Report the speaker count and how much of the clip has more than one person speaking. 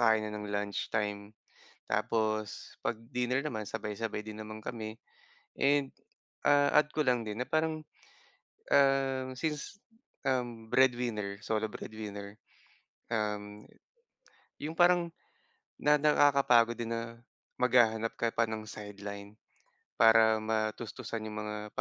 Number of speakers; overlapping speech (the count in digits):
1, no overlap